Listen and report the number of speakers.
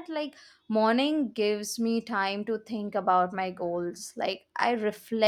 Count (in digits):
1